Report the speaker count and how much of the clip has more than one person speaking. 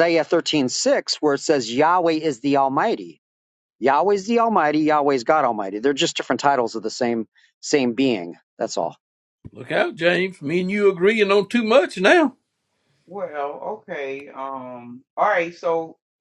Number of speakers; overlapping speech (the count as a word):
three, no overlap